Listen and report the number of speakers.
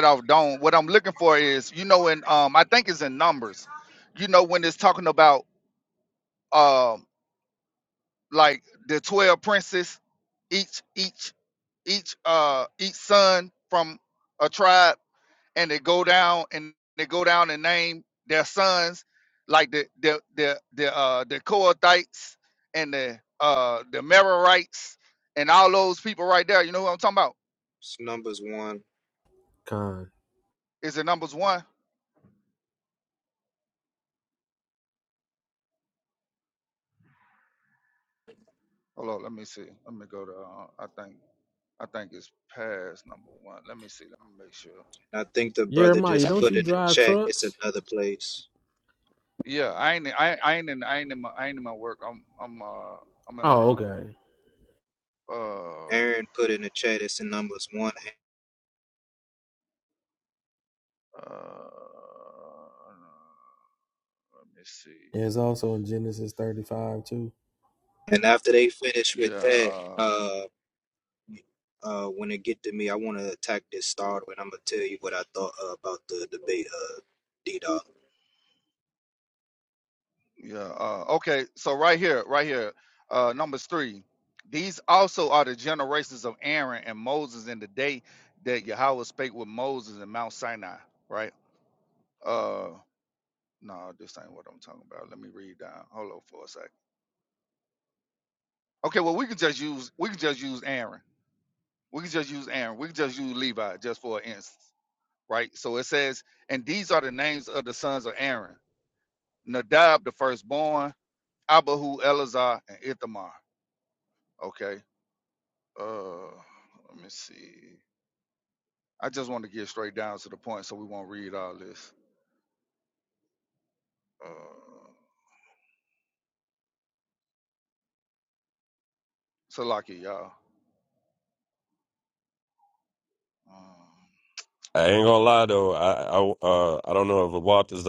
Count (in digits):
4